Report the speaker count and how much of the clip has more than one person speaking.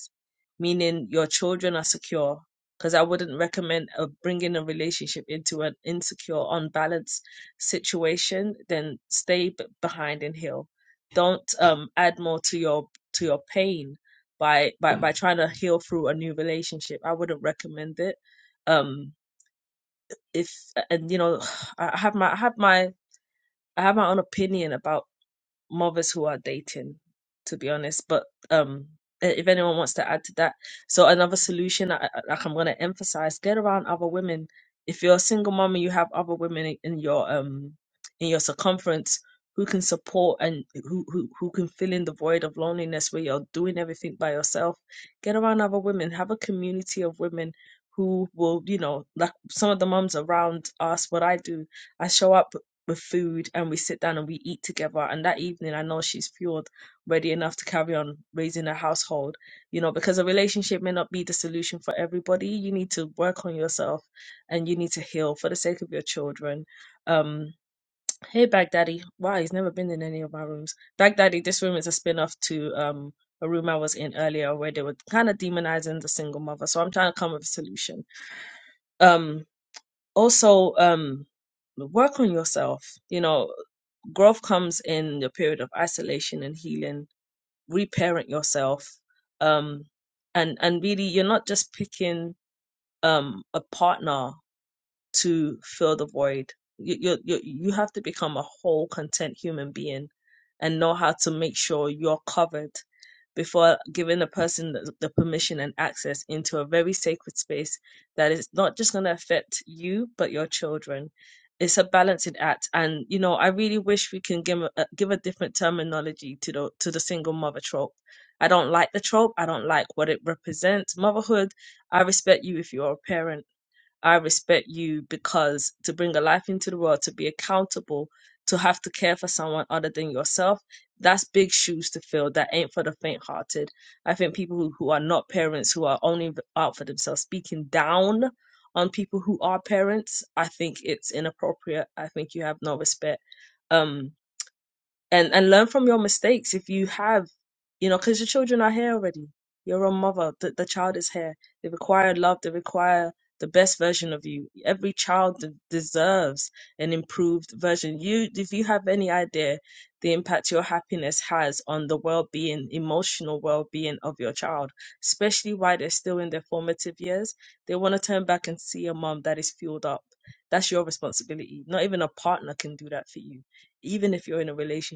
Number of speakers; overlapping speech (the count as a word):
one, no overlap